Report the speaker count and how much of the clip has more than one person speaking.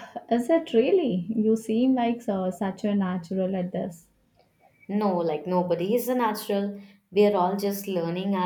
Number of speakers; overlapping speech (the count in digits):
2, no overlap